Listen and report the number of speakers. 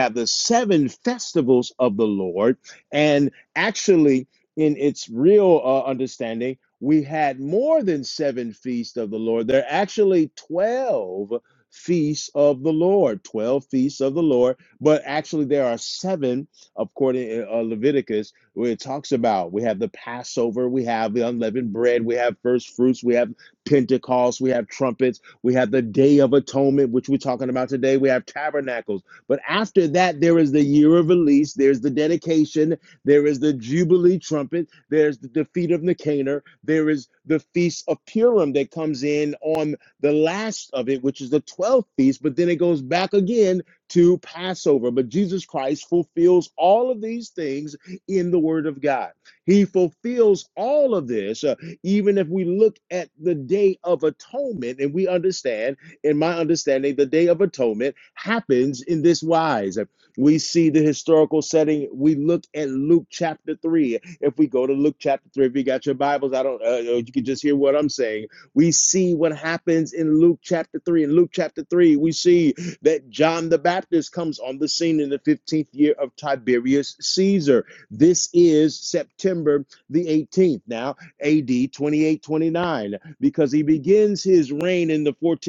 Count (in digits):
1